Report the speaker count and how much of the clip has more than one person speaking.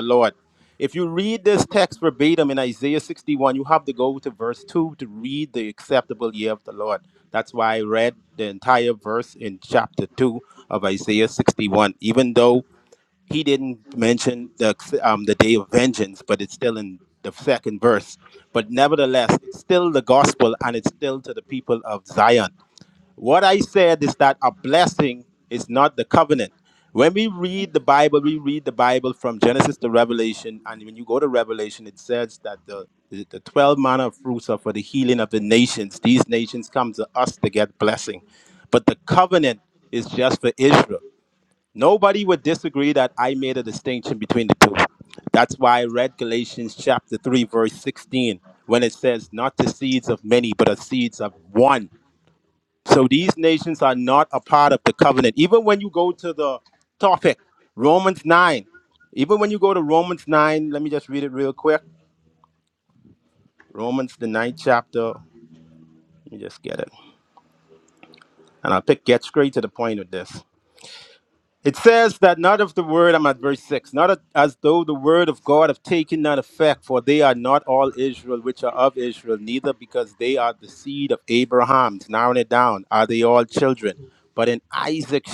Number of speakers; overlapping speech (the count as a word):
one, no overlap